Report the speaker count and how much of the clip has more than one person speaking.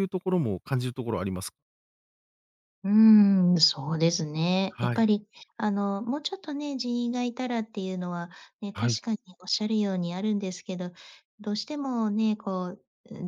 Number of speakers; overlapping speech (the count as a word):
two, about 3%